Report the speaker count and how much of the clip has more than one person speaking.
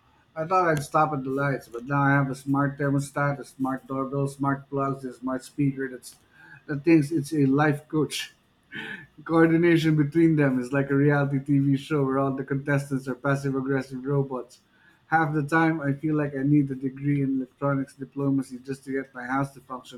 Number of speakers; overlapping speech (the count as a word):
one, no overlap